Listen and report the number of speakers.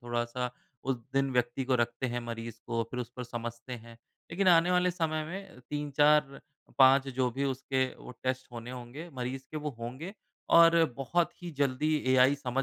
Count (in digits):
1